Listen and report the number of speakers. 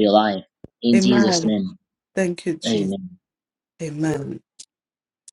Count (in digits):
2